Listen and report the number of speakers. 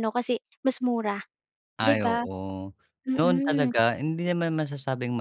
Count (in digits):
2